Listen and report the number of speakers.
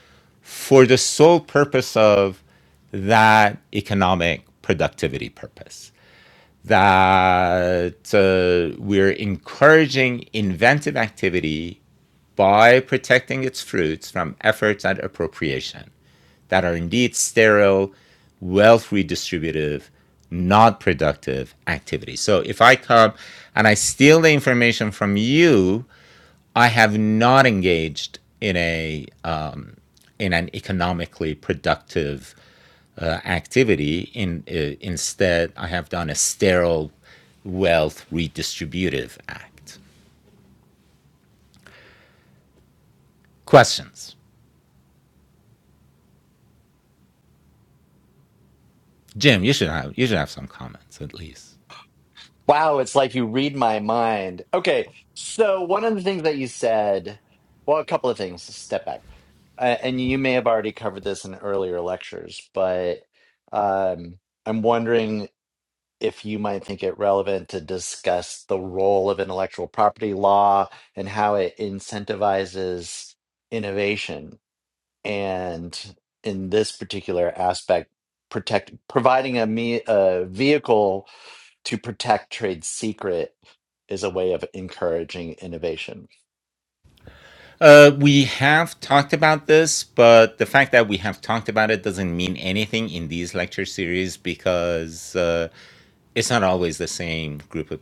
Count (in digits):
2